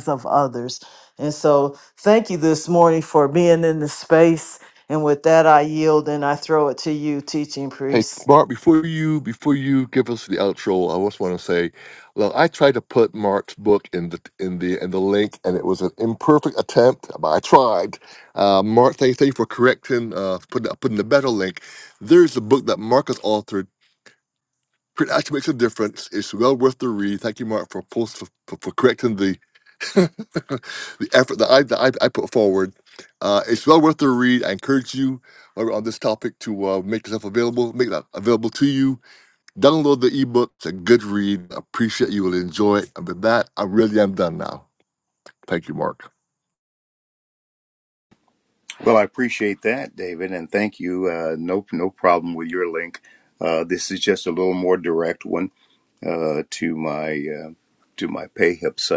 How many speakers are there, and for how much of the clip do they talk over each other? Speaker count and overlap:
3, under 1%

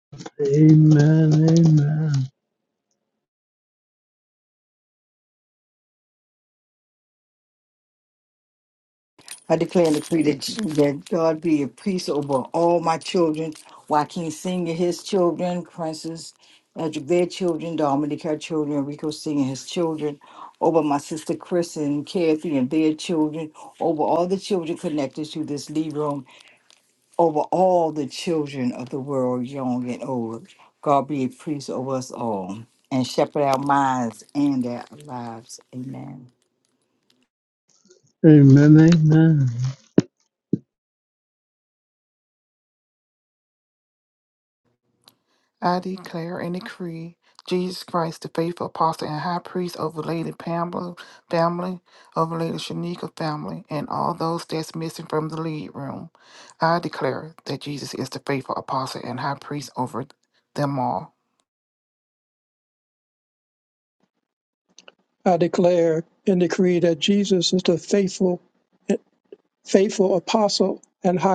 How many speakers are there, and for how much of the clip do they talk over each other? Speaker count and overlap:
4, no overlap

